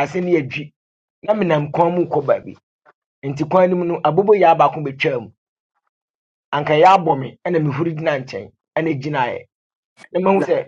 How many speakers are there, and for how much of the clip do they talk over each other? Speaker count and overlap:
1, no overlap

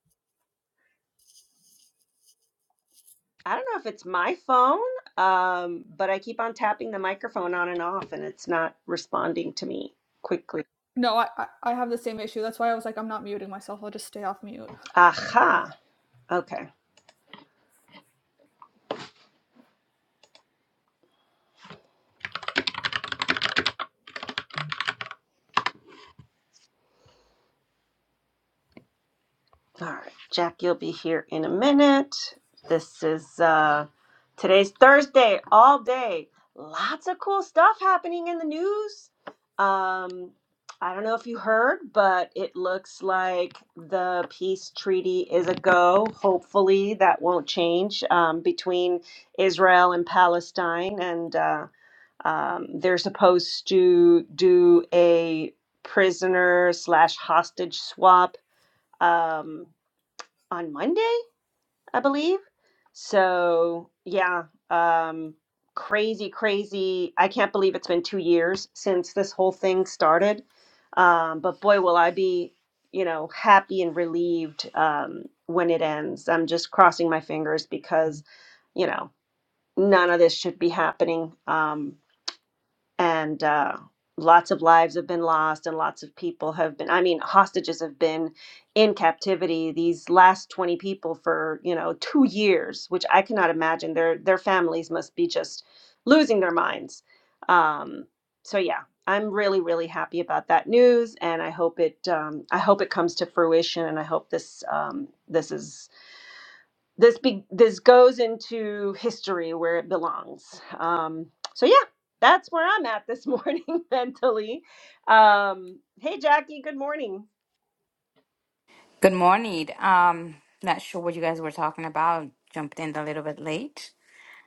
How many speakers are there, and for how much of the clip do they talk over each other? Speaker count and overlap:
3, no overlap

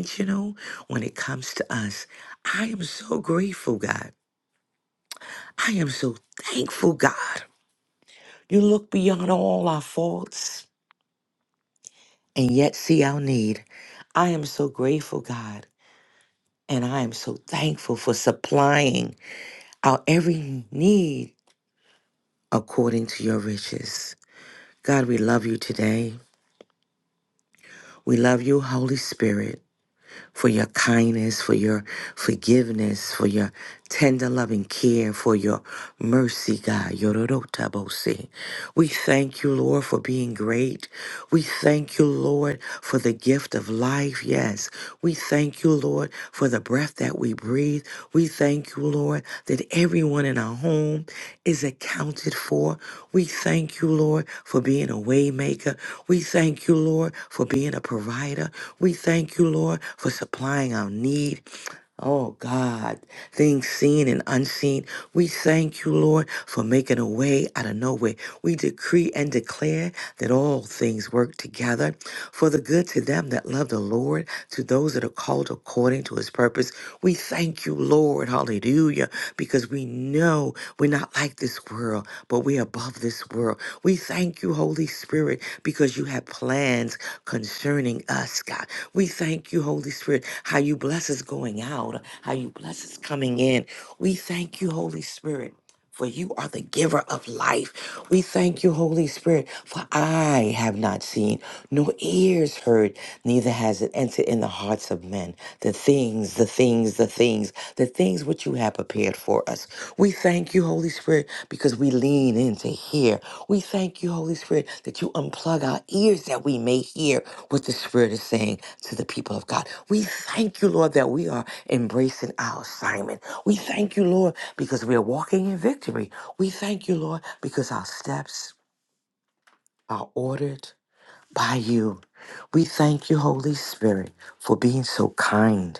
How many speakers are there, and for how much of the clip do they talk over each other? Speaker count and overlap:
1, no overlap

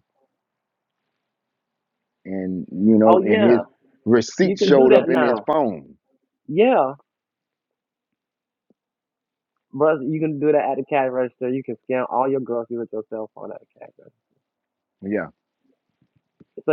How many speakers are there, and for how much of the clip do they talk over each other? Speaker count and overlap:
2, about 9%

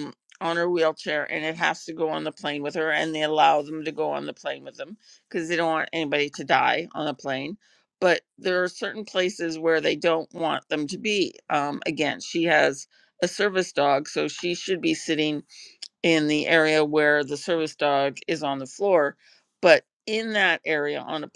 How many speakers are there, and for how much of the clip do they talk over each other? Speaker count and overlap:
1, no overlap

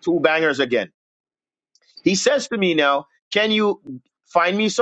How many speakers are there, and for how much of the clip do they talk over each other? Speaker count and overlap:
1, no overlap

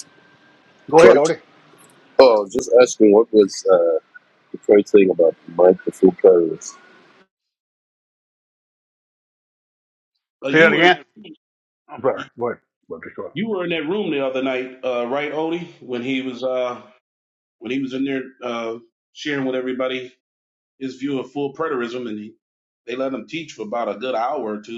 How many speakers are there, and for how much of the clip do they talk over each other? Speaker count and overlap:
3, about 4%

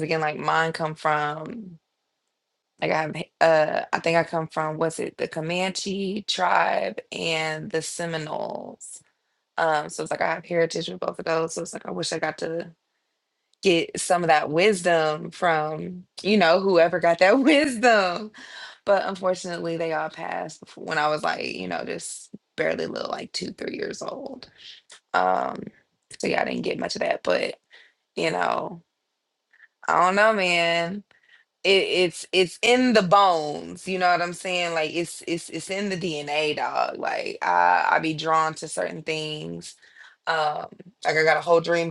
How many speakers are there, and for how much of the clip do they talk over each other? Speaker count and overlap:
1, no overlap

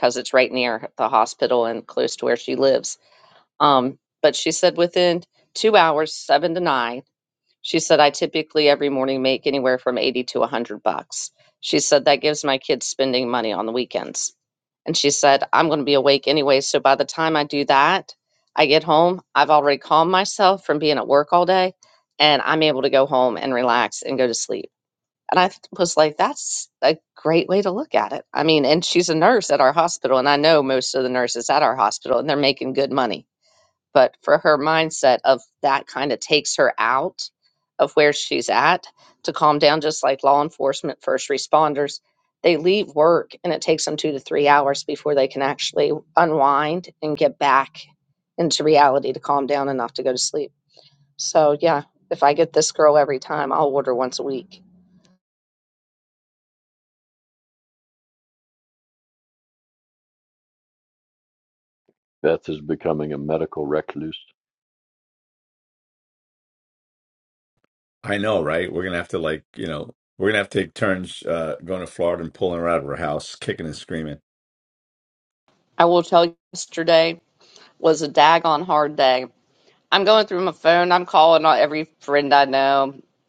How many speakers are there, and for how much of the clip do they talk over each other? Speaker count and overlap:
3, no overlap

